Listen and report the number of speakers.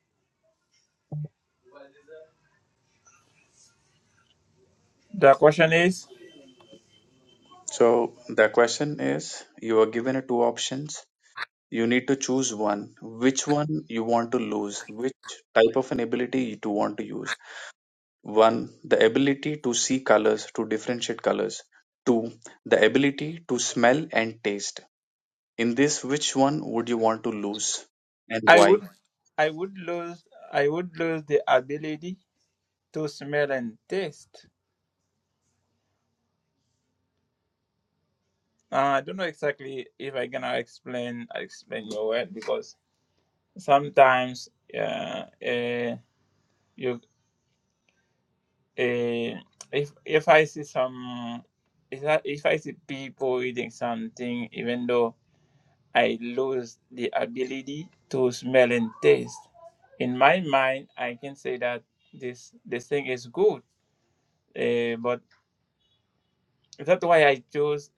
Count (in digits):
2